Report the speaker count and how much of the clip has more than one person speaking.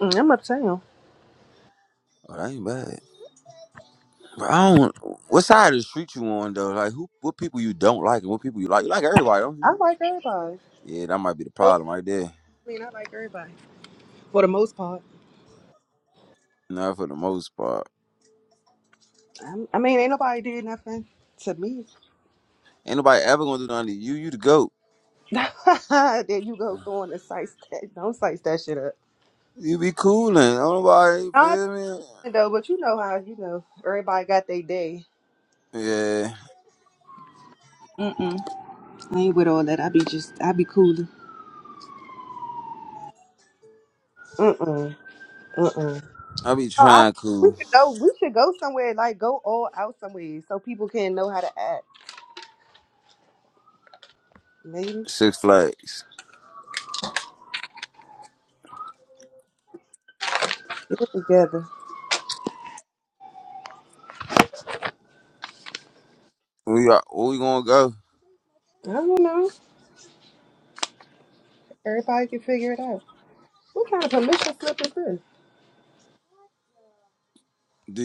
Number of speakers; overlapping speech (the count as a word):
two, about 1%